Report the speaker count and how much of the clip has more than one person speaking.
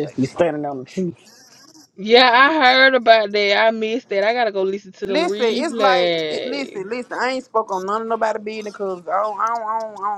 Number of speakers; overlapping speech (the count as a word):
three, about 13%